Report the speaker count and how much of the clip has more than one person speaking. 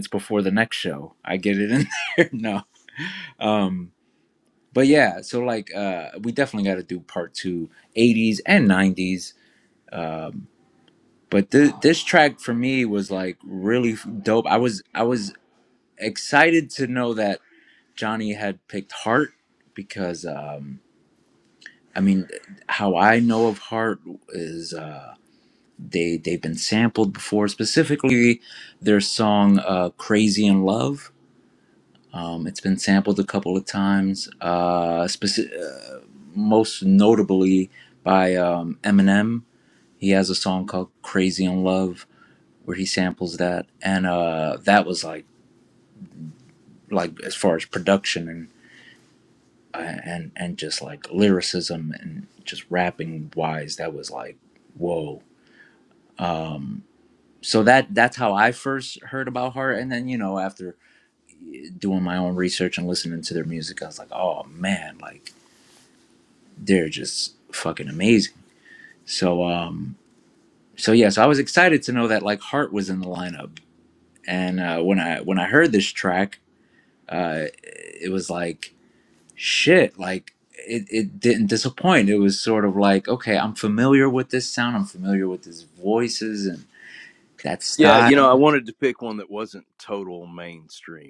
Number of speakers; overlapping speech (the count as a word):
two, about 1%